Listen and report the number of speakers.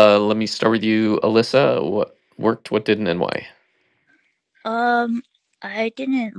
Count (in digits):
2